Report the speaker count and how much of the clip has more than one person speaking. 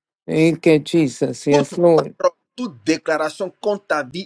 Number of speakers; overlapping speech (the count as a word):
two, about 15%